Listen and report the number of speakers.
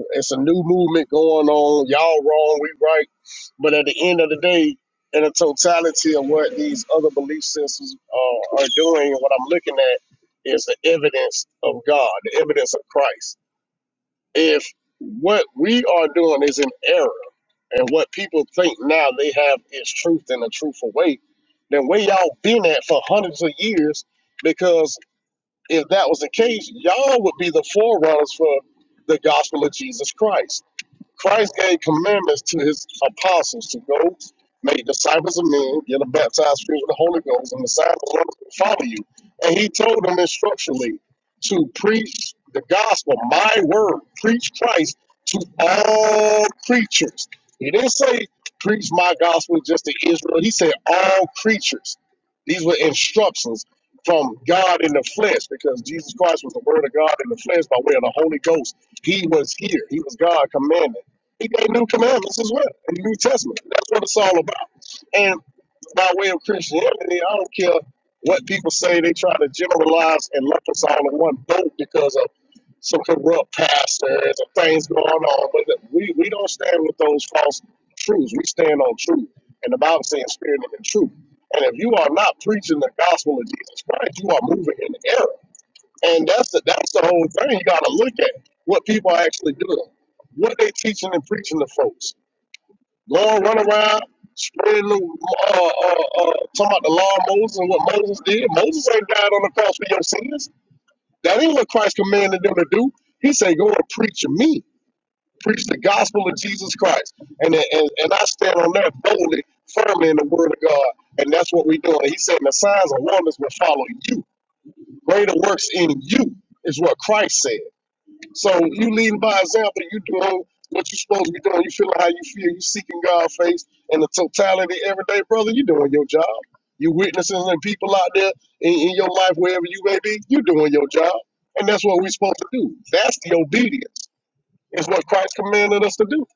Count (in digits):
1